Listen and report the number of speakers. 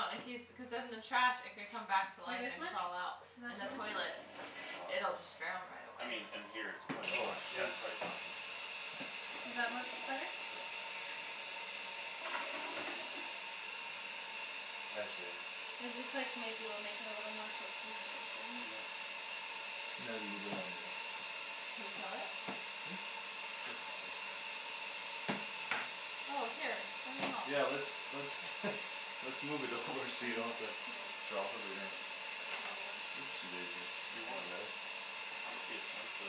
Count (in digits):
4